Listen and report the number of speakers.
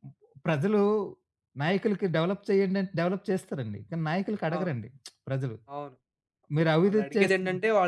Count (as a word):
two